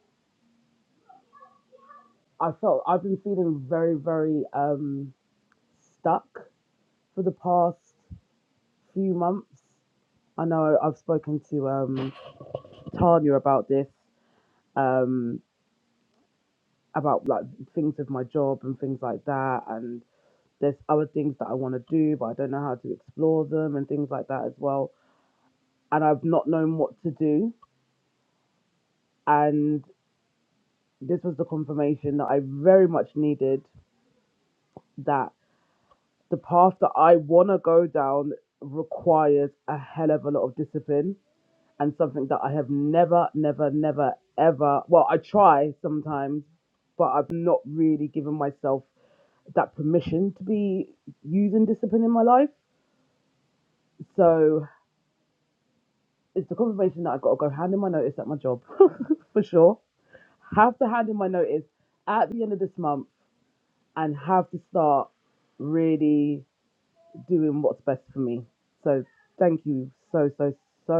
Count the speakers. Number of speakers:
one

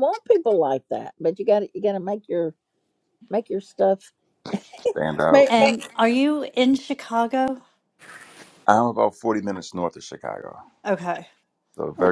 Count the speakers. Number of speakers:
three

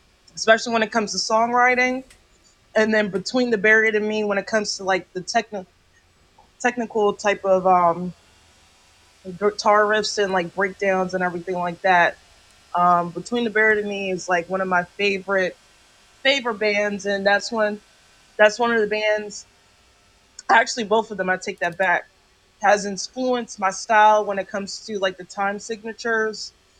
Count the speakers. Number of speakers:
one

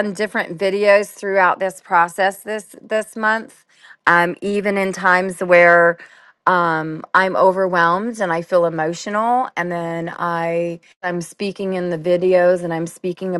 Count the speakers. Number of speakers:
one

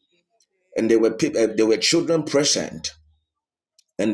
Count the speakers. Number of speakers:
one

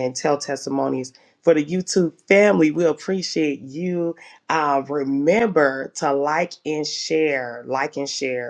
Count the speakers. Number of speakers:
one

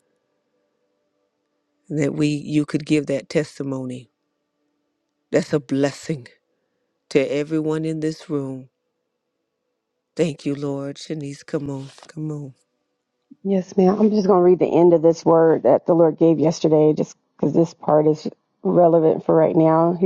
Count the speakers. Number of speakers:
two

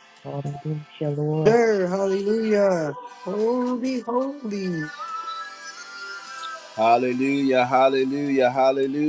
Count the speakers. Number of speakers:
three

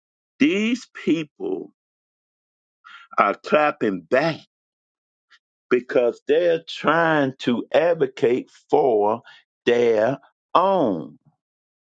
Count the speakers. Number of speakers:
one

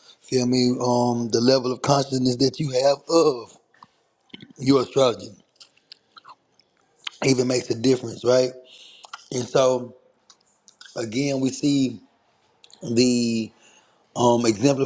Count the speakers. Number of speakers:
one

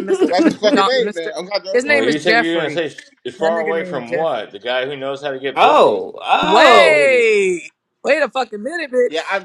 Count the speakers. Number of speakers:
four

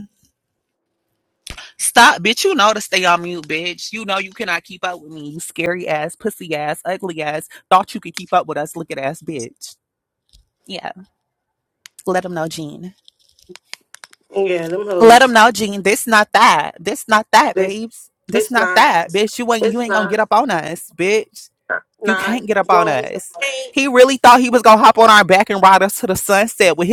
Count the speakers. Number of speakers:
two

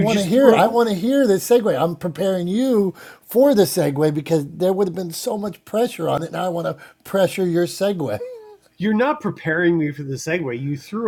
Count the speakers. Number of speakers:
two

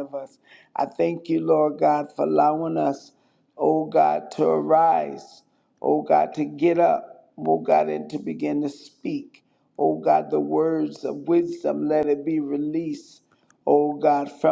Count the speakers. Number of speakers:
one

